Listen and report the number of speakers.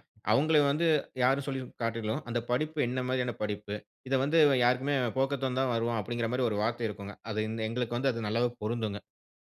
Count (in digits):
1